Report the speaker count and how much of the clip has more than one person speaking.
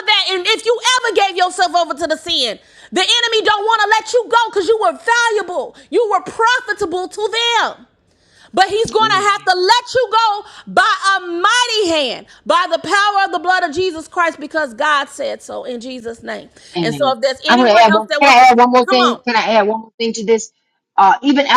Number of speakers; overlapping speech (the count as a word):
two, about 9%